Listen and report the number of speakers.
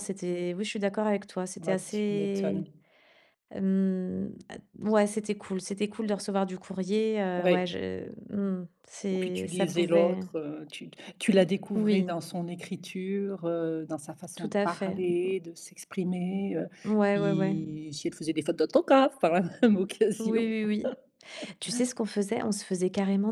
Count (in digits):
2